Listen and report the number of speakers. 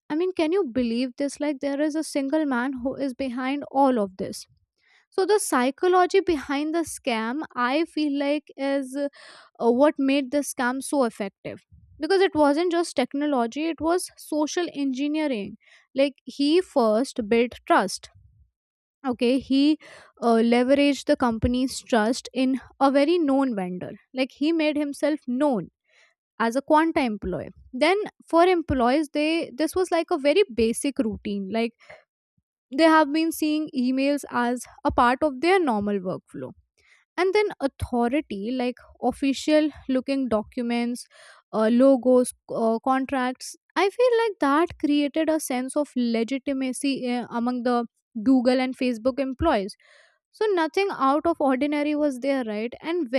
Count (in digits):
1